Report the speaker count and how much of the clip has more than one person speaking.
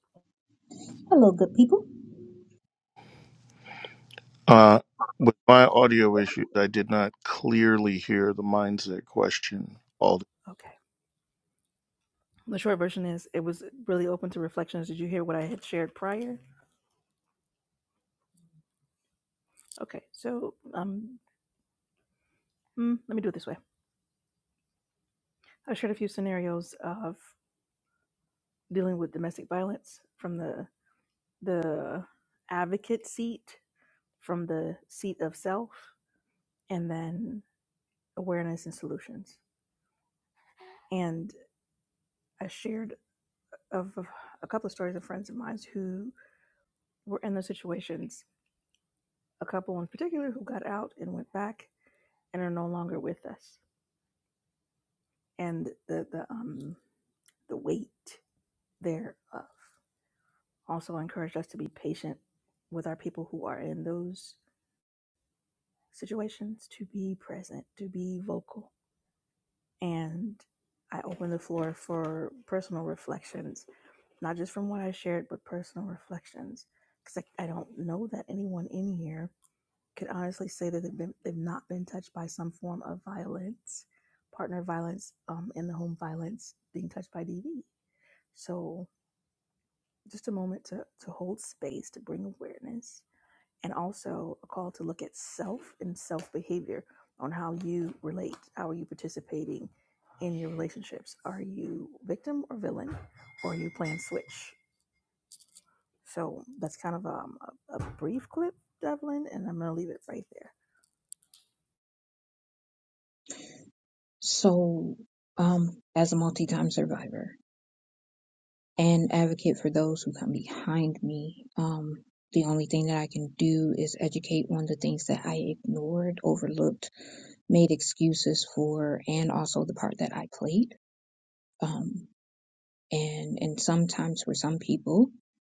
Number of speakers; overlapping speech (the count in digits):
3, no overlap